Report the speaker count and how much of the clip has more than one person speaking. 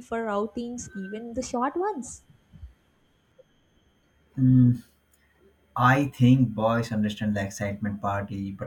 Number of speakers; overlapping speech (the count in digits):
2, no overlap